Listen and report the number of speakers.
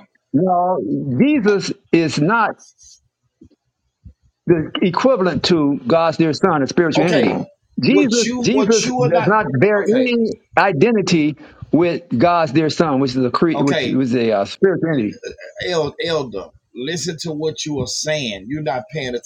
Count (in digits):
2